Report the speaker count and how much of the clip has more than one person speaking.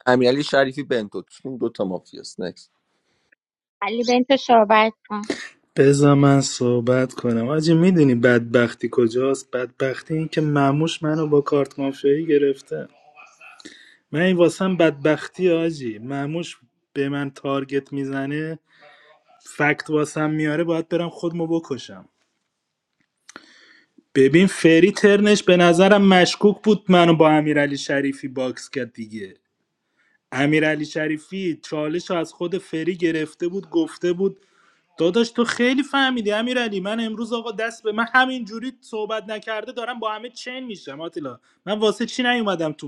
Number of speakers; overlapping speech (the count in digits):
3, no overlap